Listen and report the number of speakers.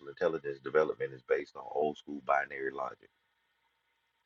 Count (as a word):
one